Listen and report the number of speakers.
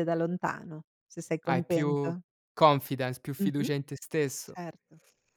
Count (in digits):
2